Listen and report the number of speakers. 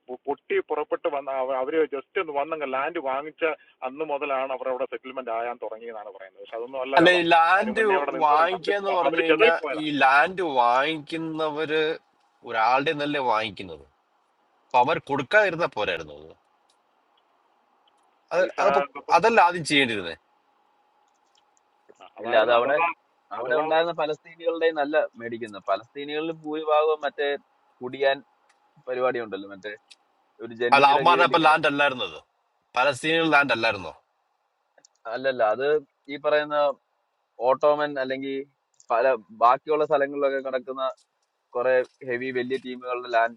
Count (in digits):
3